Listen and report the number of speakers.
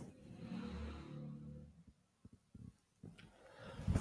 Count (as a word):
zero